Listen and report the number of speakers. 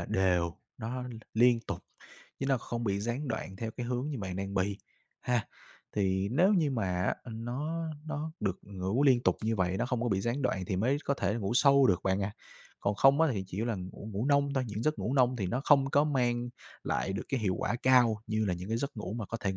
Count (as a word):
one